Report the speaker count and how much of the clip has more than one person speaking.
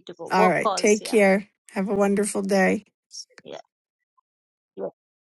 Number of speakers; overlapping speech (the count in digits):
2, about 17%